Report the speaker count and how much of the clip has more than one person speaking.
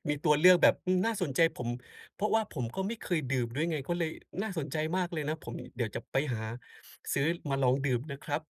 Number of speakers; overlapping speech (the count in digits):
1, no overlap